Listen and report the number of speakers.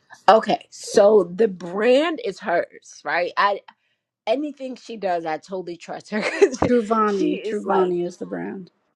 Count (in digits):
2